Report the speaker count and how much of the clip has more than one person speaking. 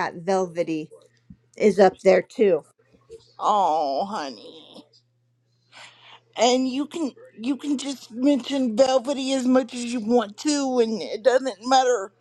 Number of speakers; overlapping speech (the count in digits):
2, no overlap